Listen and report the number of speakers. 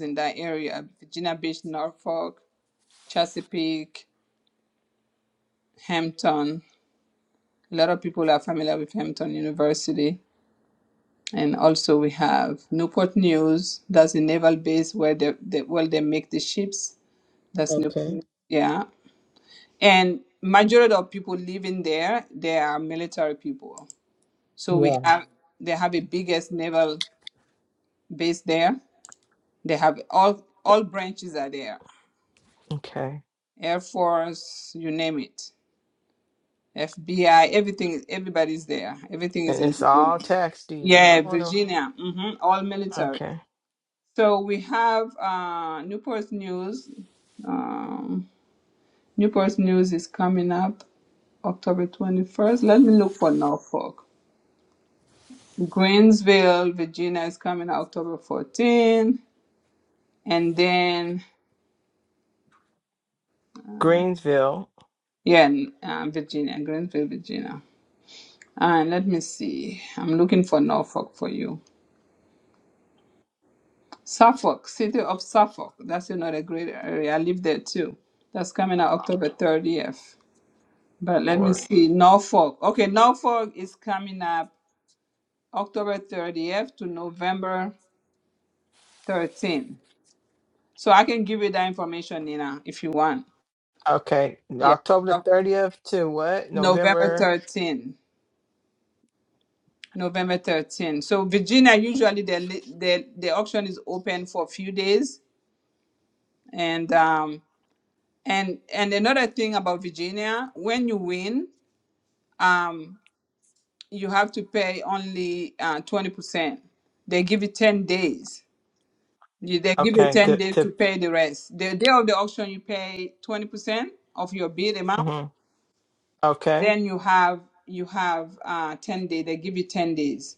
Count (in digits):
2